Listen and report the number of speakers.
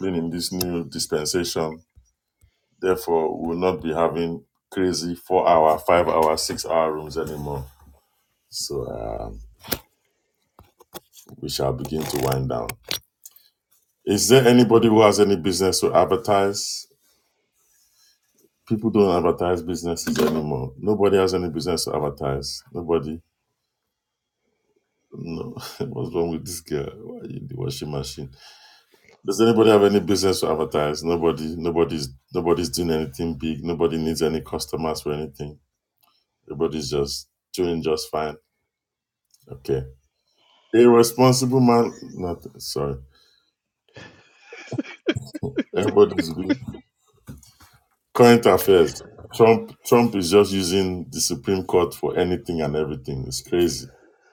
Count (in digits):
1